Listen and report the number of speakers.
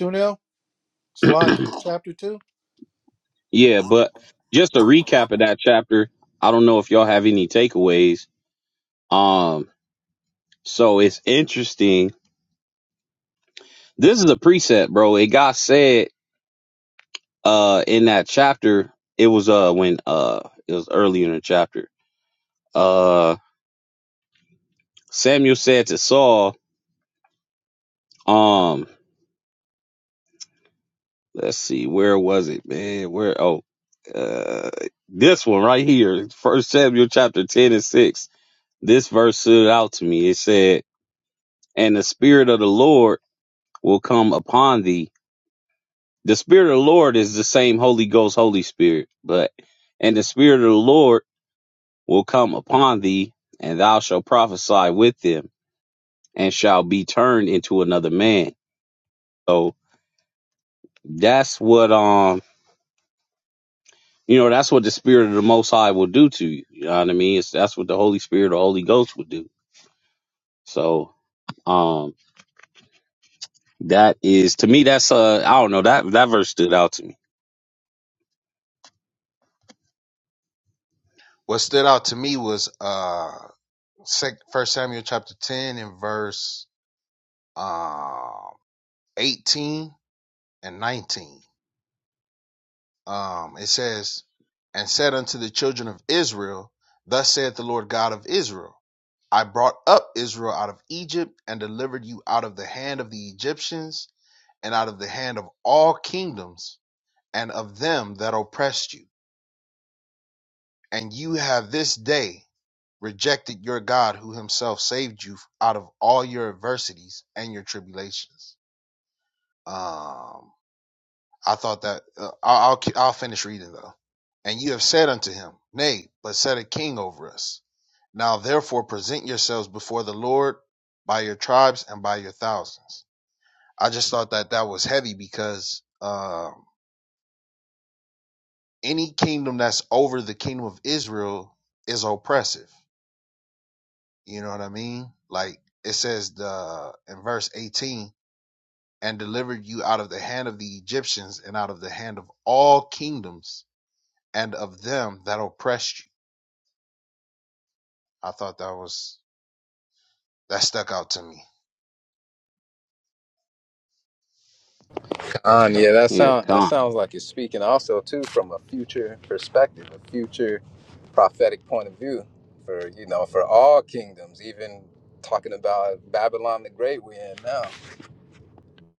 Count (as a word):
four